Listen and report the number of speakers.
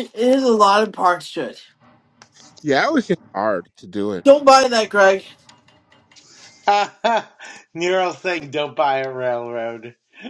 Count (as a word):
three